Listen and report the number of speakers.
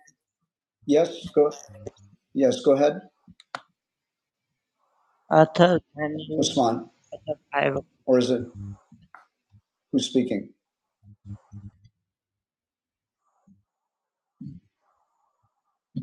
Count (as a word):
two